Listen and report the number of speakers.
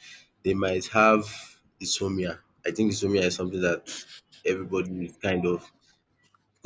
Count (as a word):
one